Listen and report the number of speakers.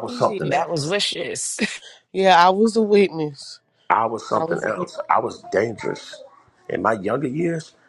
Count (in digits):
3